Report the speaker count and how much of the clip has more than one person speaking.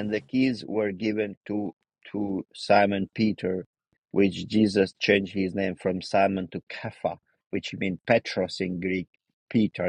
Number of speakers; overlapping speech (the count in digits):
1, no overlap